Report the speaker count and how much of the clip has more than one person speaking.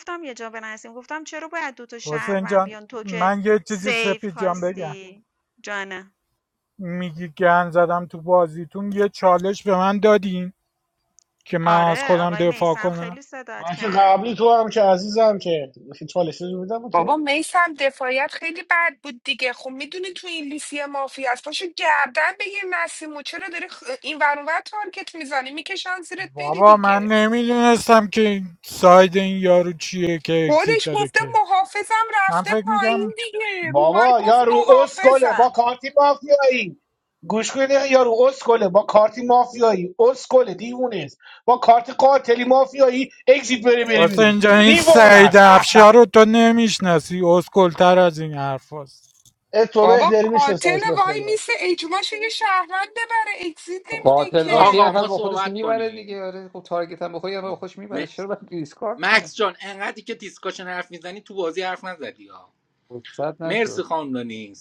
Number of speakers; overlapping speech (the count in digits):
6, about 23%